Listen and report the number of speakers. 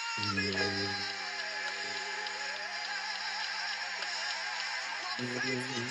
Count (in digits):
0